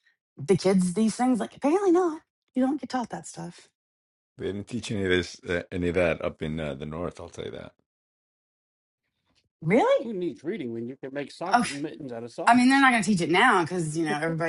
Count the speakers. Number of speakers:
three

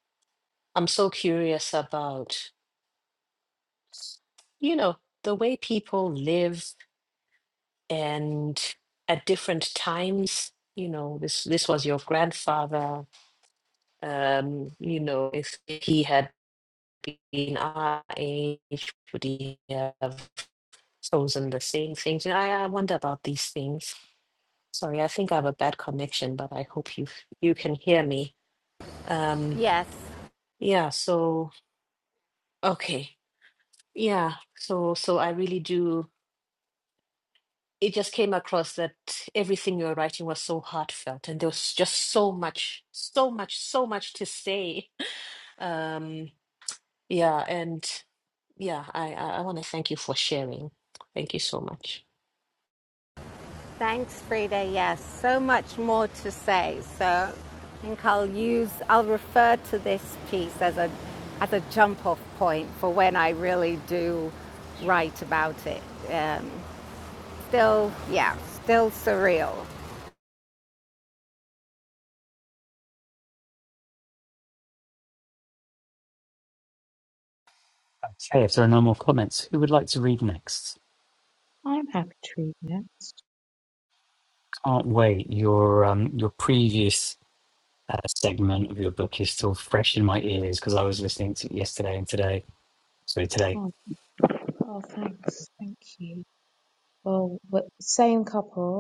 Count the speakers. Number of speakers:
four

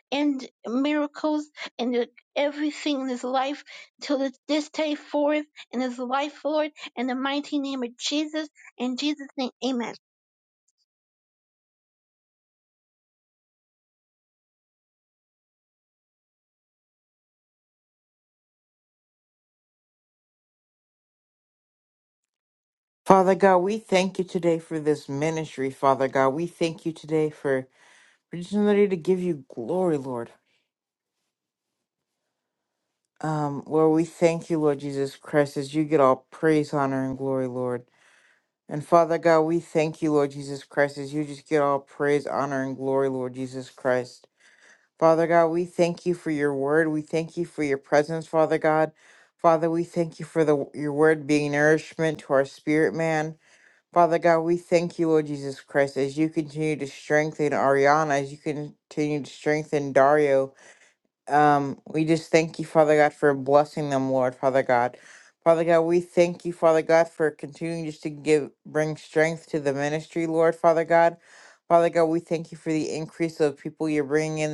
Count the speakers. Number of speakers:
two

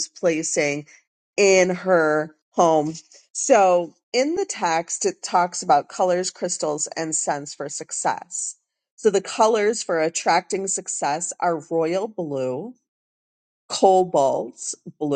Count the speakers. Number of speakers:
one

